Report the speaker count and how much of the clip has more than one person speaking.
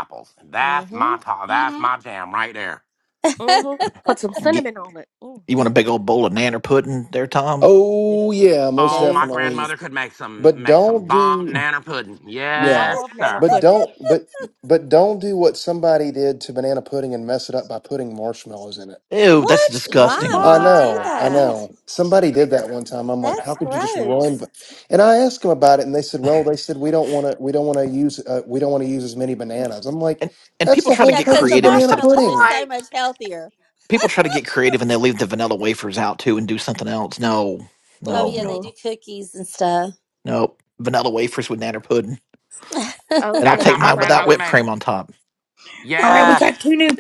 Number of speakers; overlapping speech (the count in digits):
6, about 26%